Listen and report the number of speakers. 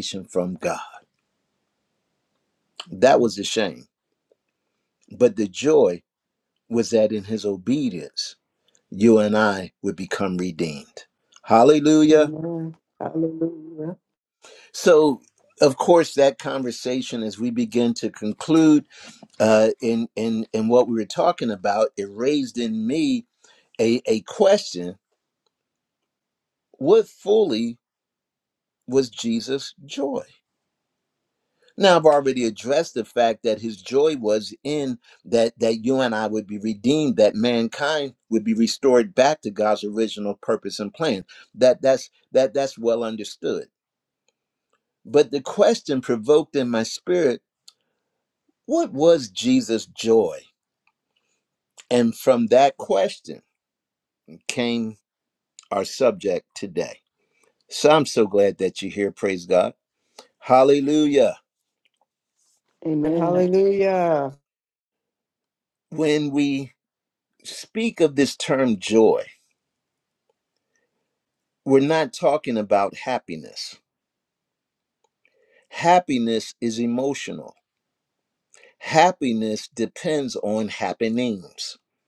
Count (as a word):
three